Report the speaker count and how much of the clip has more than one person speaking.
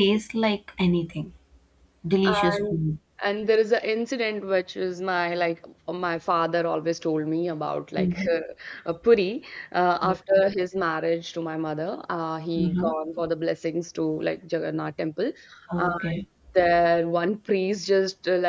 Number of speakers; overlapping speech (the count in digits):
2, about 10%